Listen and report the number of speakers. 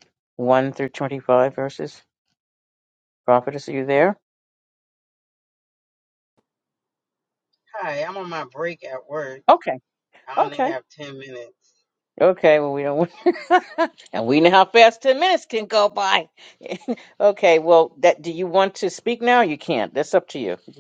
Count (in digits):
2